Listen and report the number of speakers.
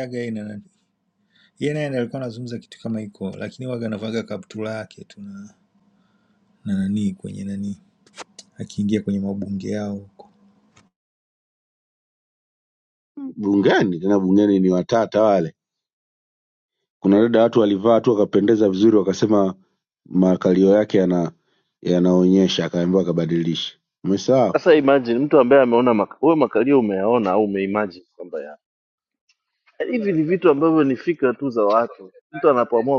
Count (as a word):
three